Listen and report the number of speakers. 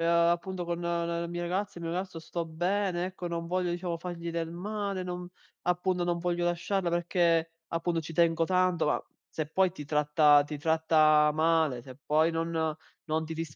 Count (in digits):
1